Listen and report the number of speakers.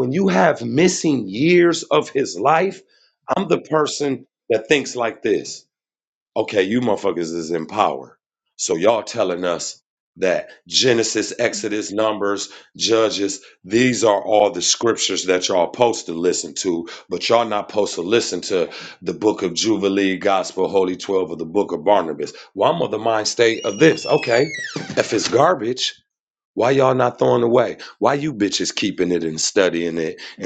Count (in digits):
1